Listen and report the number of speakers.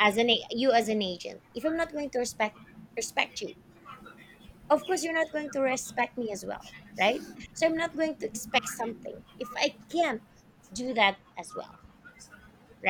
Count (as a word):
one